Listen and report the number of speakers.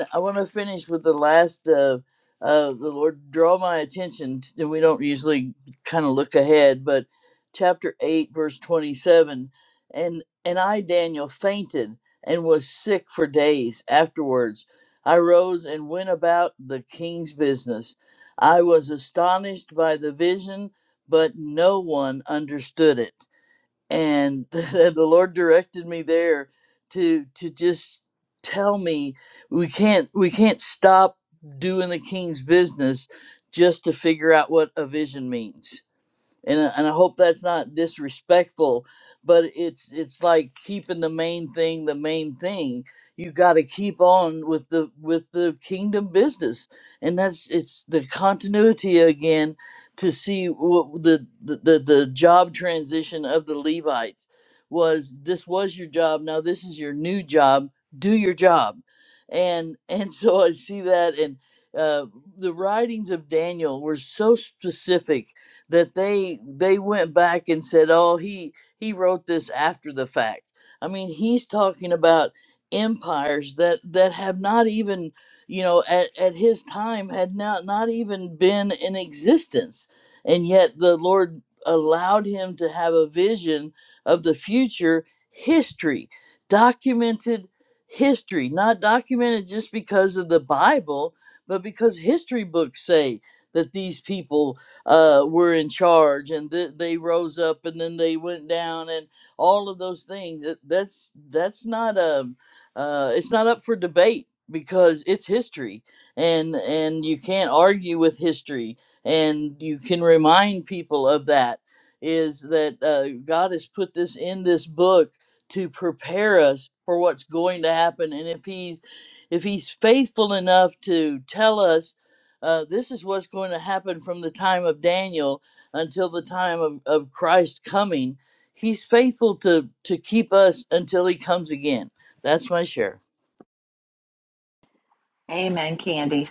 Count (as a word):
two